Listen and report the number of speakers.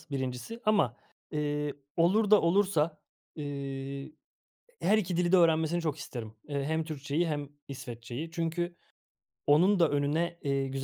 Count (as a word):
one